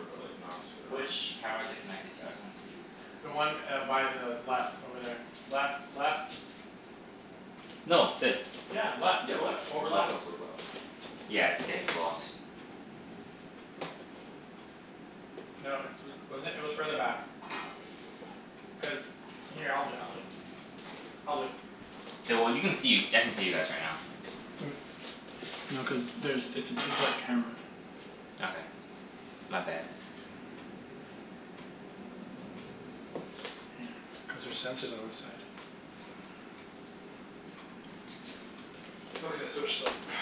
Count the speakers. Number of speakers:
three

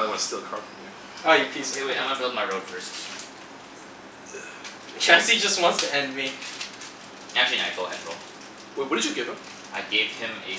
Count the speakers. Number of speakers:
three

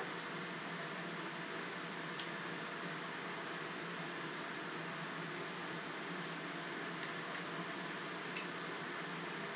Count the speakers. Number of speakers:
zero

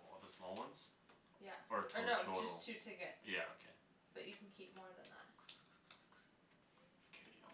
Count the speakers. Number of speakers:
two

